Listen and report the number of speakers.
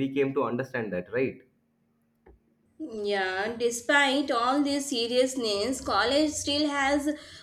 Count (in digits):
2